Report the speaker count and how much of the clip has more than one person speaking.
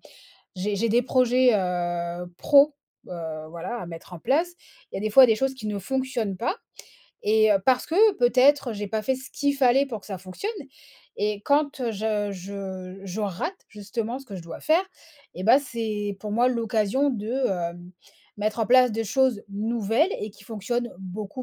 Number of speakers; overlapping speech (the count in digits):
1, no overlap